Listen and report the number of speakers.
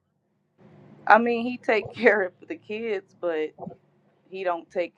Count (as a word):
one